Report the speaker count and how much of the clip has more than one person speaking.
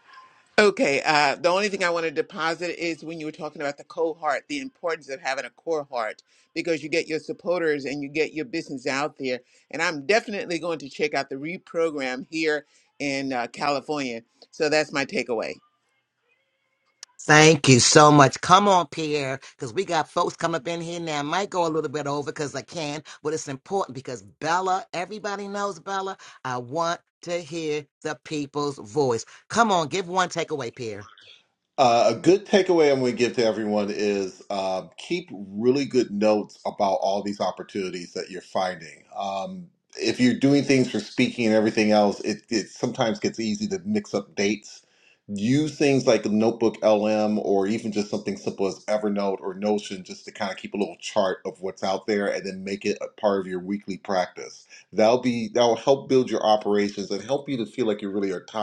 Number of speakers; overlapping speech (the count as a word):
three, no overlap